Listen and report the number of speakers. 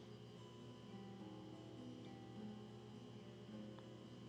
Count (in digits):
0